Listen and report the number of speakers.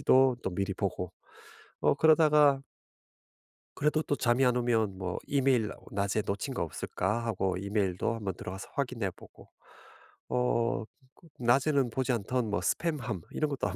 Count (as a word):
one